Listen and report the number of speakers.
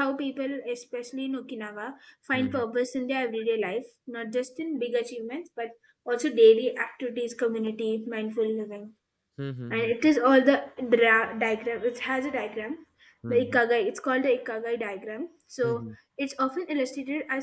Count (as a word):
two